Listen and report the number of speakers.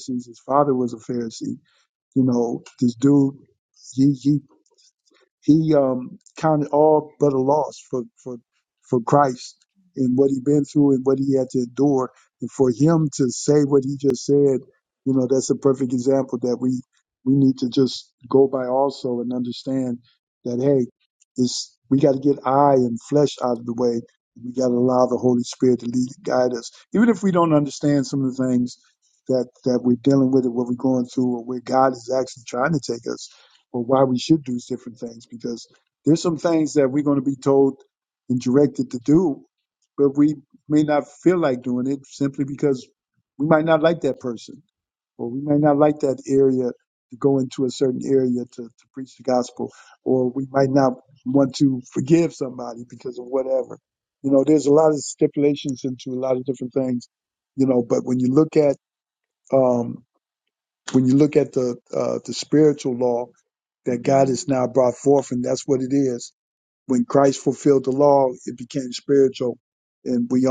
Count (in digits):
1